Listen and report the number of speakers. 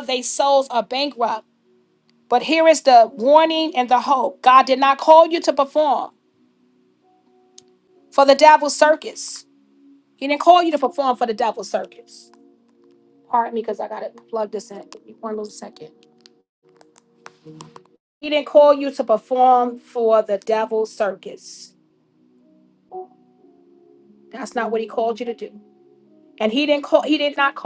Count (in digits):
1